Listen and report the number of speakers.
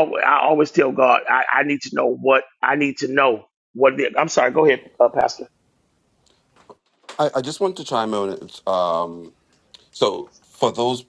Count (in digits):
2